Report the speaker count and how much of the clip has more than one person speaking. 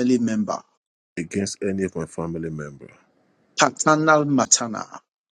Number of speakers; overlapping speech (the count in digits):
2, no overlap